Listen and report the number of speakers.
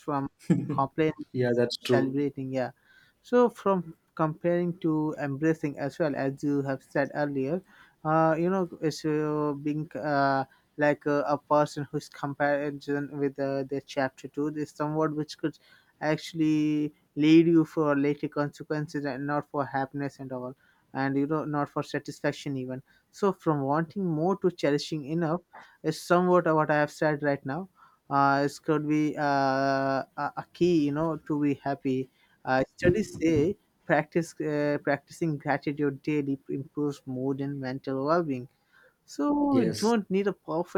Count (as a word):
two